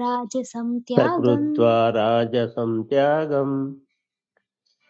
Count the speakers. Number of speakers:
2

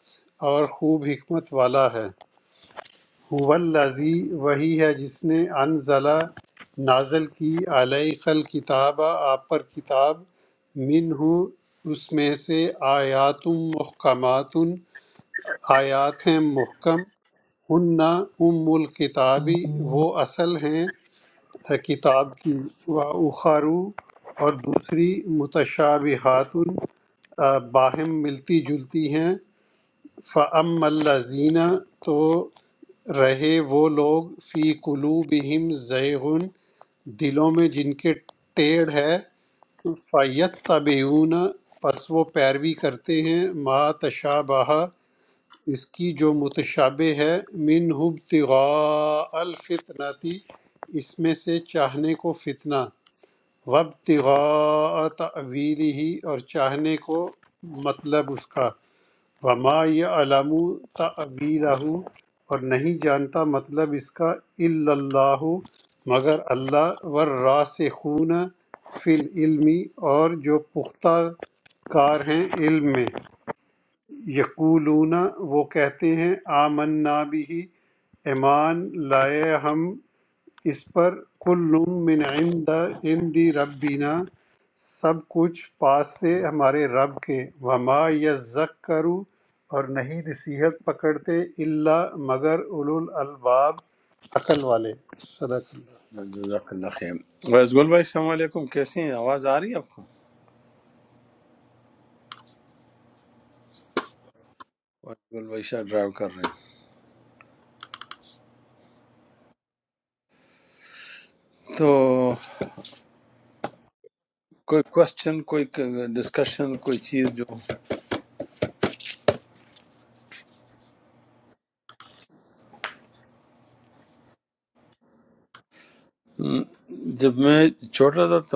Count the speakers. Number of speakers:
2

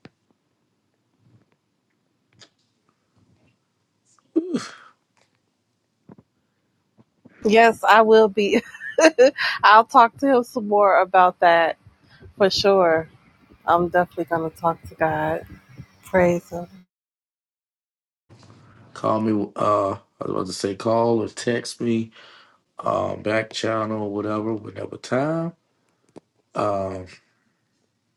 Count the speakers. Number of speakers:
2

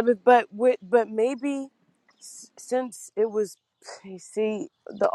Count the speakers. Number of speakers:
1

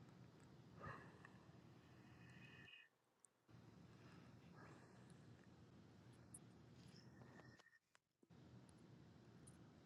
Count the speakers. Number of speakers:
0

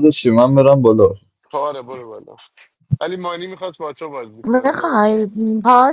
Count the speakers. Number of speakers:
3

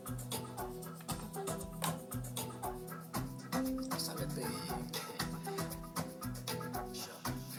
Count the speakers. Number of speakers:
0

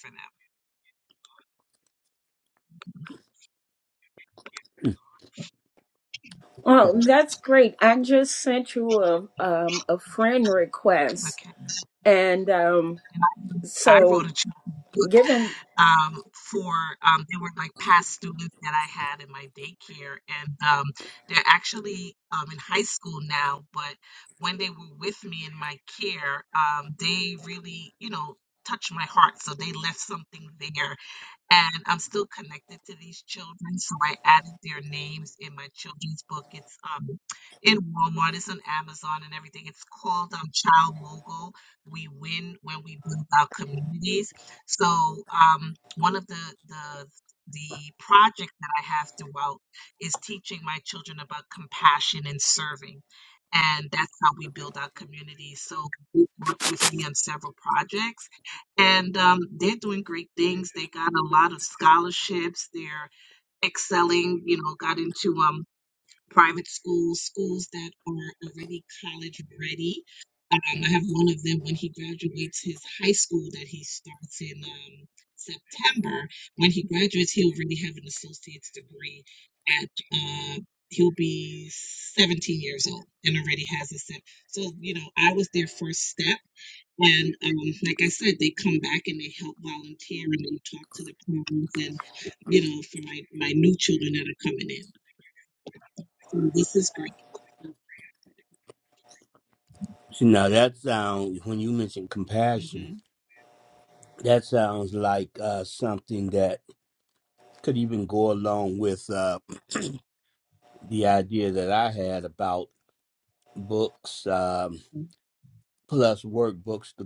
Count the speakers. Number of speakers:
3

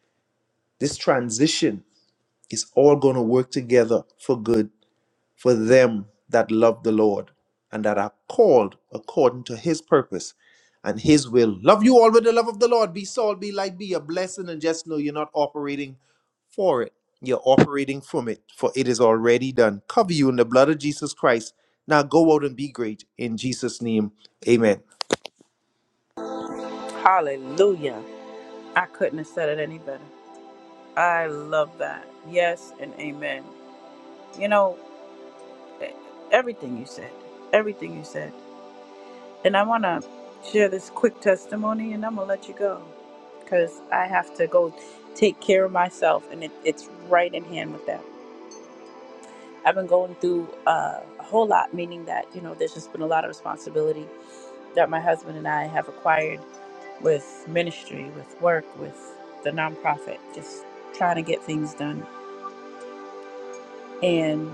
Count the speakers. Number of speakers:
2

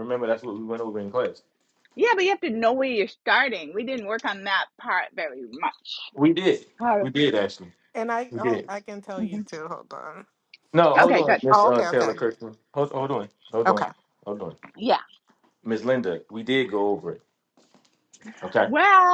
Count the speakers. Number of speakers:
3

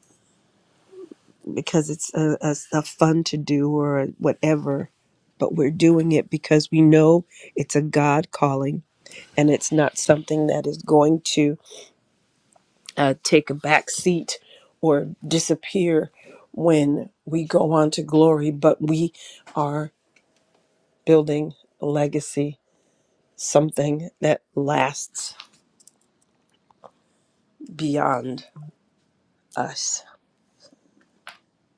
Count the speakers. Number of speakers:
1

